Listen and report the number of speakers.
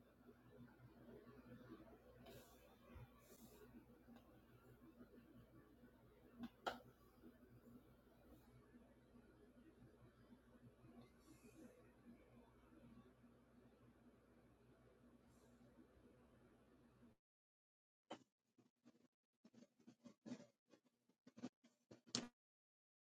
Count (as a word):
zero